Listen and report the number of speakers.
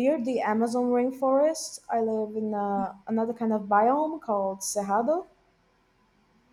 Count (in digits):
1